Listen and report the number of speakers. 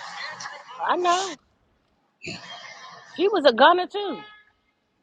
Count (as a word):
one